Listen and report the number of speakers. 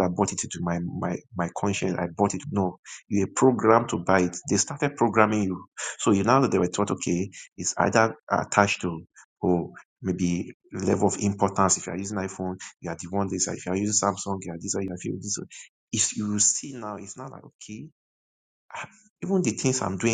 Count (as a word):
one